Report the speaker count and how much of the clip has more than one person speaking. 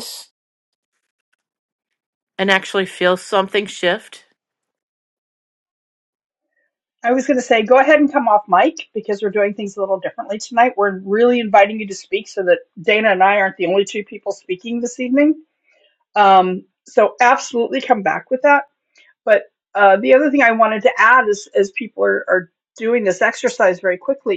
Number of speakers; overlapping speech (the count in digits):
2, no overlap